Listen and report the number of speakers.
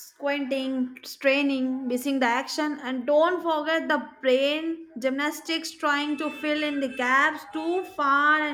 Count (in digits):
1